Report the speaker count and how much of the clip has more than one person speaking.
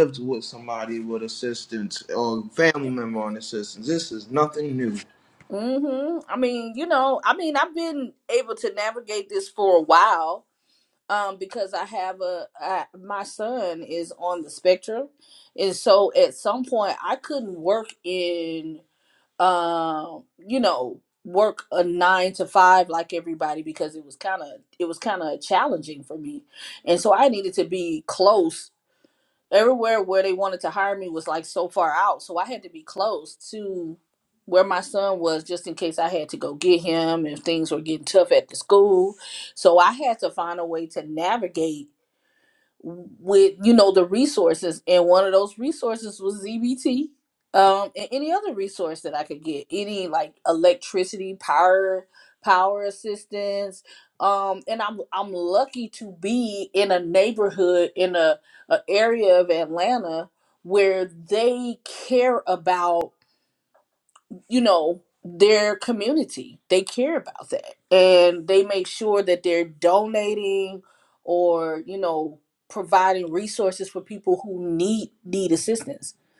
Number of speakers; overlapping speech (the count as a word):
two, no overlap